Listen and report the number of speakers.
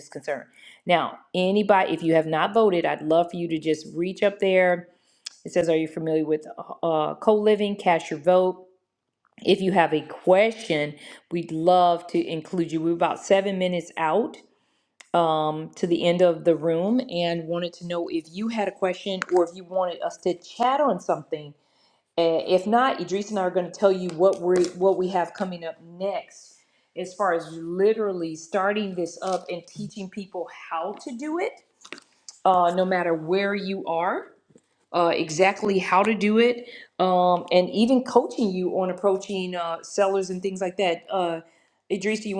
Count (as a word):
one